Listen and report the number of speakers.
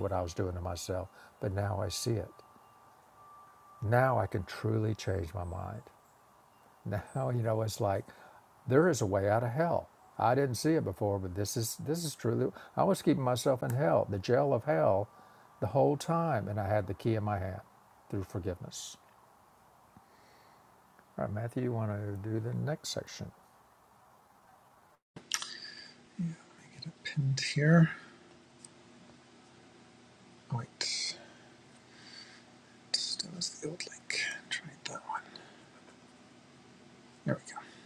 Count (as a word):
two